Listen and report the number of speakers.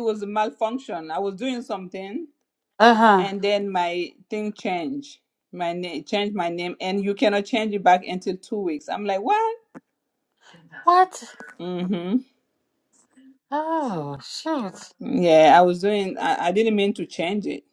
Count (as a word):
two